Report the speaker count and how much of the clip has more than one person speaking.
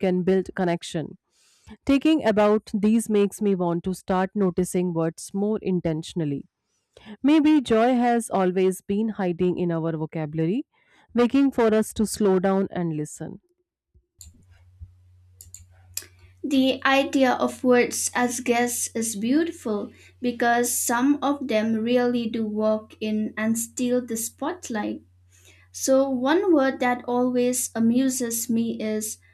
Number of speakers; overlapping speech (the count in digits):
2, no overlap